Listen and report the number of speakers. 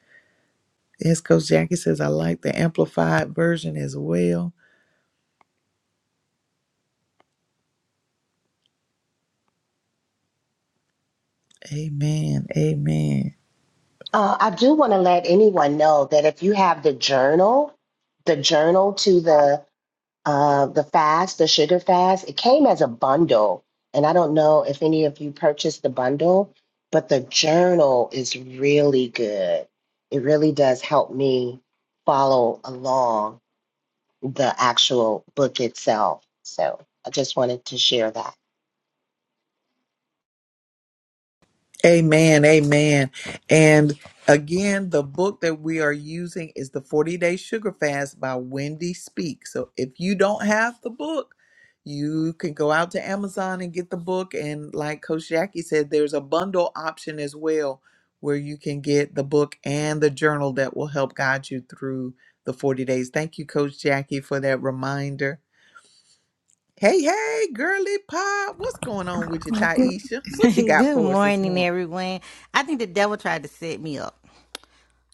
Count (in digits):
3